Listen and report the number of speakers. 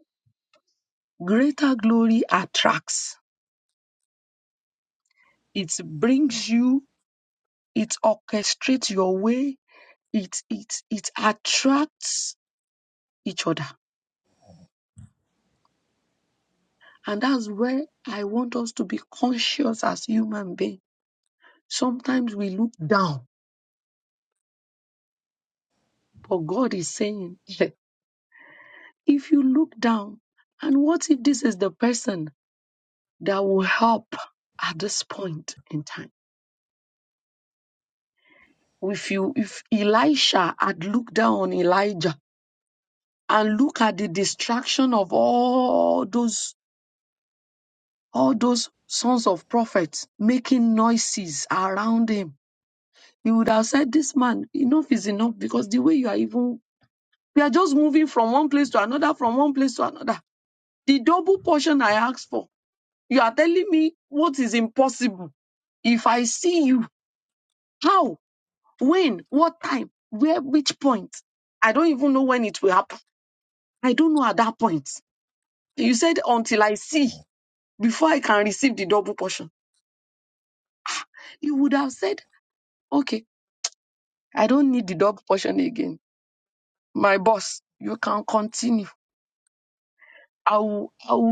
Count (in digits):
1